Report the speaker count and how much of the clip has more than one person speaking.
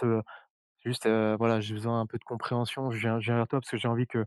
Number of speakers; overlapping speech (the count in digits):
1, no overlap